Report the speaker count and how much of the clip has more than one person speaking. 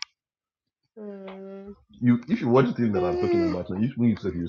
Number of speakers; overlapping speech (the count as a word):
two, about 14%